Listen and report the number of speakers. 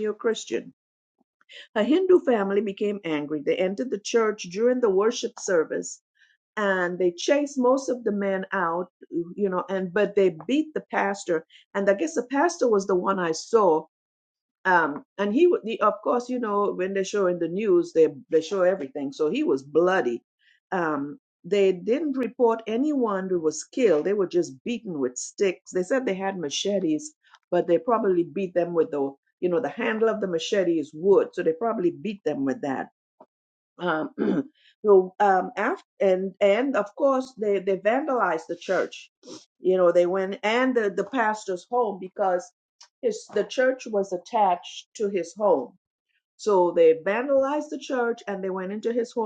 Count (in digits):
1